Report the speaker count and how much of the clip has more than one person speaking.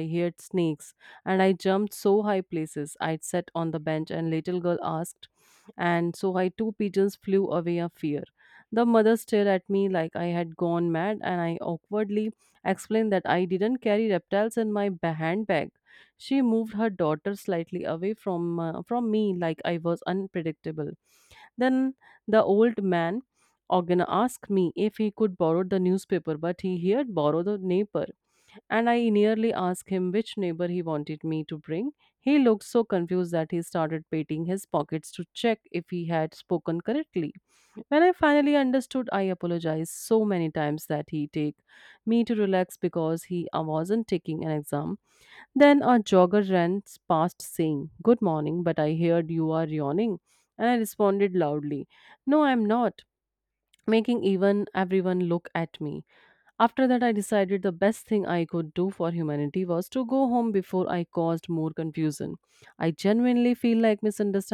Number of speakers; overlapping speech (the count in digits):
1, no overlap